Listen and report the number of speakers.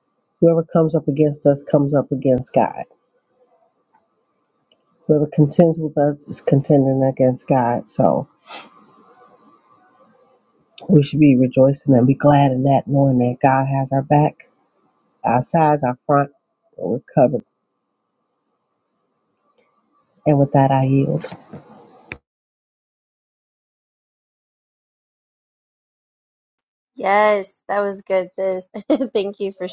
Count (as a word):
two